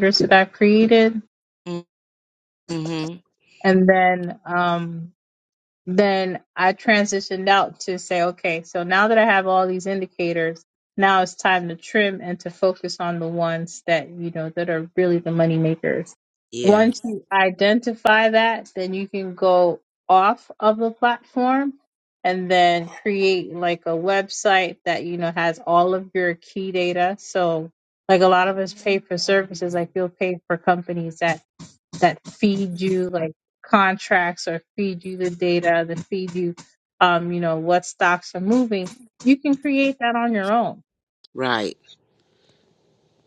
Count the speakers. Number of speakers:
two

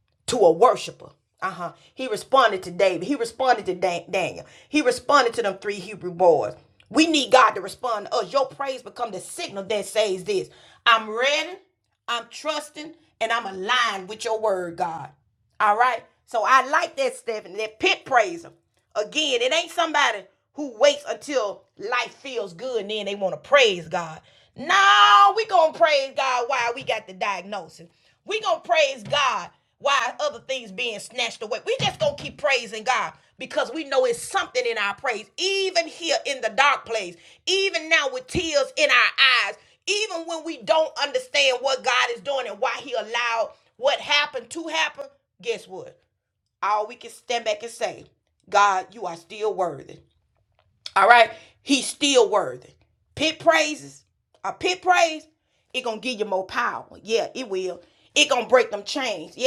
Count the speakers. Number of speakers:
one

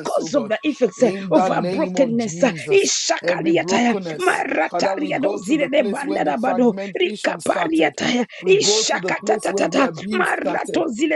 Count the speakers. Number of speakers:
two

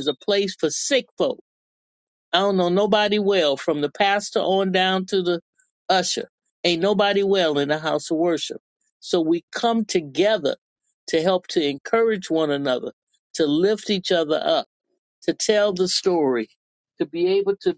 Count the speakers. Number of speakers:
one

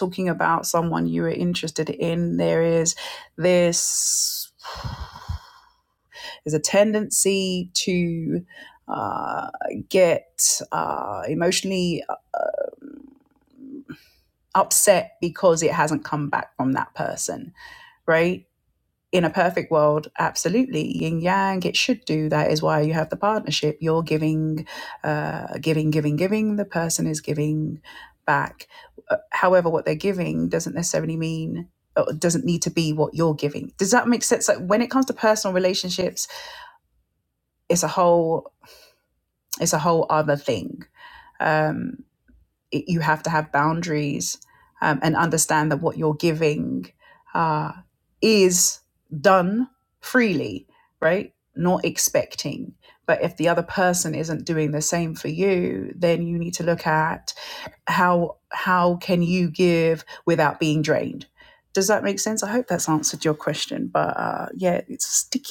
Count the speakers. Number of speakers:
one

